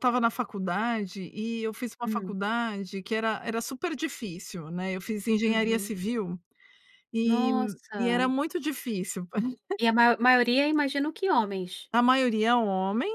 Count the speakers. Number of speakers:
two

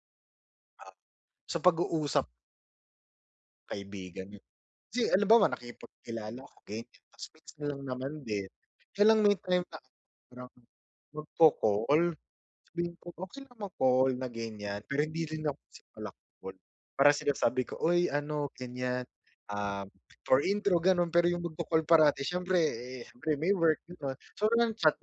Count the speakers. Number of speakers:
one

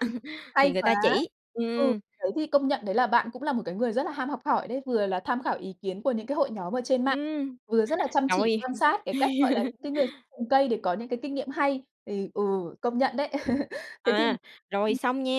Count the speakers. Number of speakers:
two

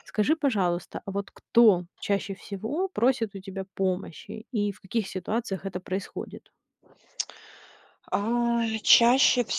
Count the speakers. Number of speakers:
two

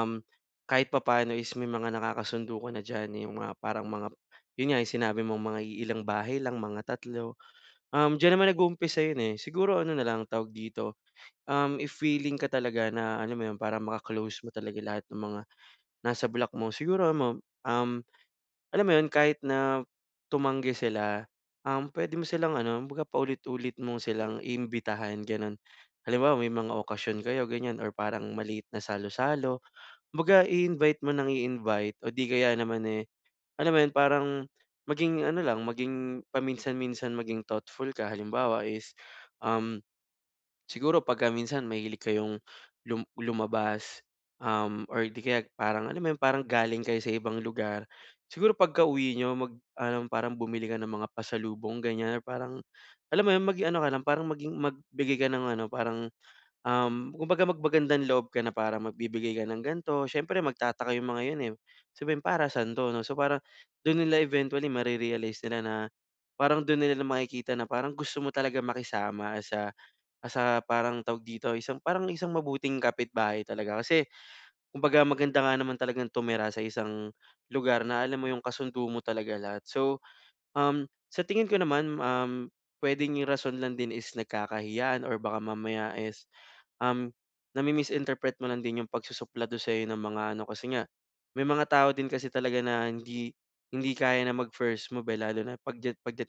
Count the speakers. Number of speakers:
one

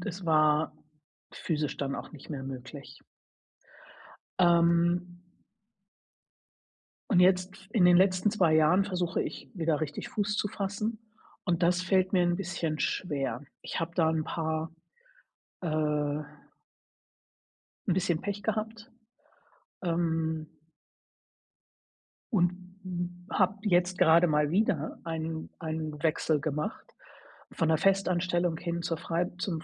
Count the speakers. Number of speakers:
one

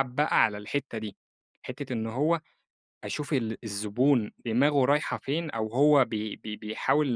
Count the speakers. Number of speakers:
one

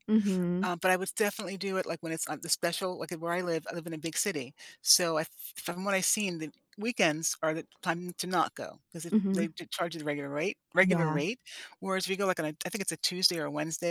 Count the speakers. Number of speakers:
two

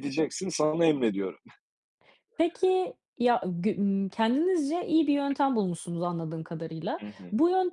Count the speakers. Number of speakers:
two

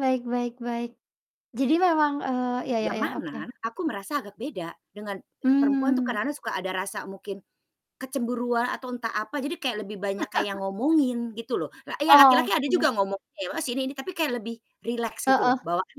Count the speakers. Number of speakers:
two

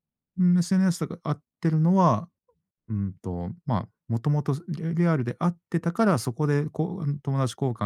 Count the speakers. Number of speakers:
one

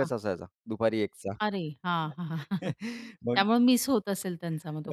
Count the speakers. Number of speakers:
two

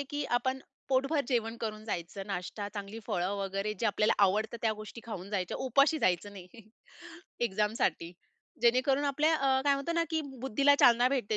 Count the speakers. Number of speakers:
one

